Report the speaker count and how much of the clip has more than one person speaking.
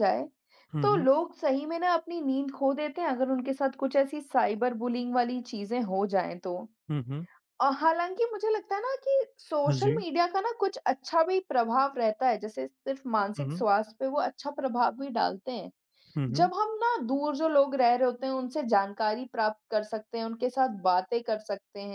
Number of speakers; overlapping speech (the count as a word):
two, about 4%